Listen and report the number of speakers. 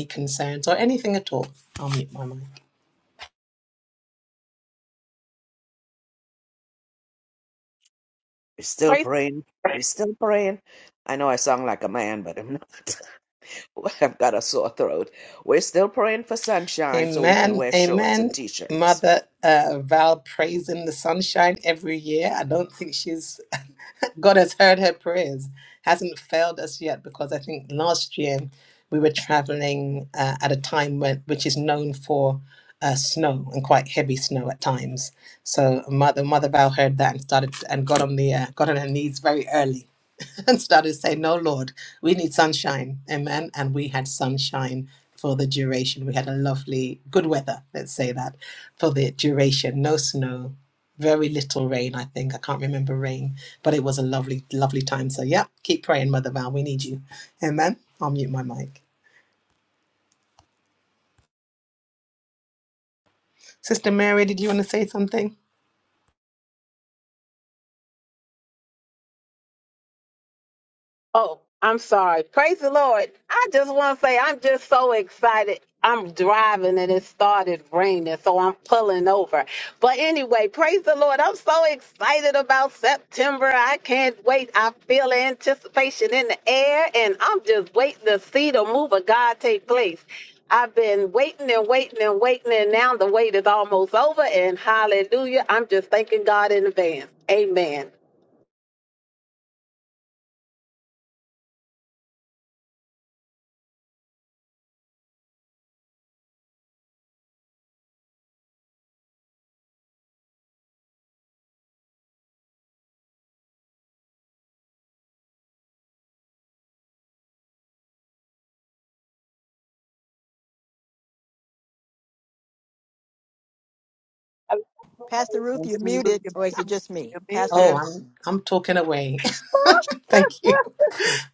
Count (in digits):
4